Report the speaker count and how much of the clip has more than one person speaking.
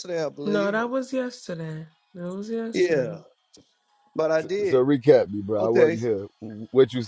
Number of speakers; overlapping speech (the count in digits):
3, about 23%